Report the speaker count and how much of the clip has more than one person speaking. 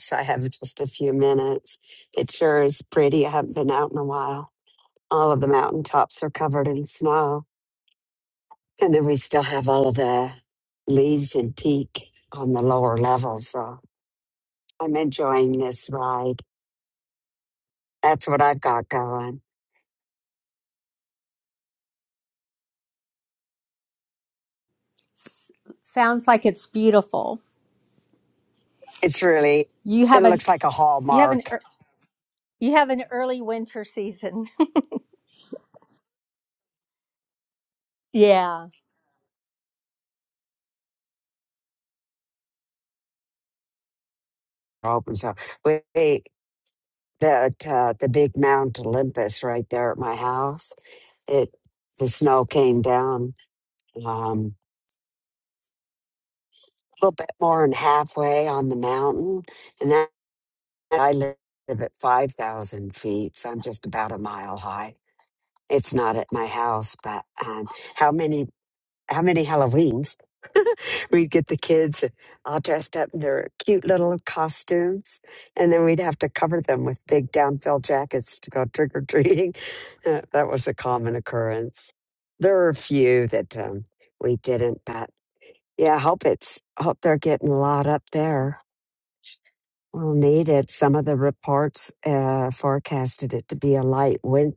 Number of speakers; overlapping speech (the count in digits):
2, about 1%